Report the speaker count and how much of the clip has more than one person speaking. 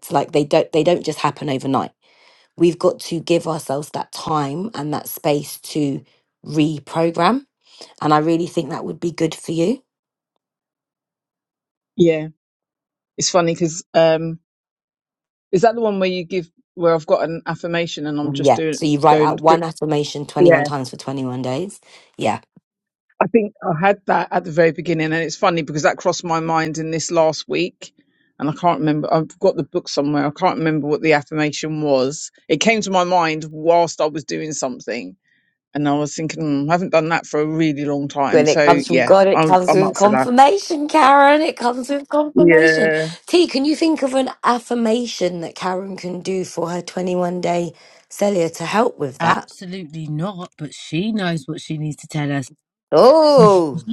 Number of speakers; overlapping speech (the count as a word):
three, about 8%